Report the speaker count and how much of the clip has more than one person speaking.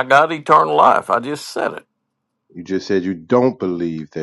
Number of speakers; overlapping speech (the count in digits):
2, no overlap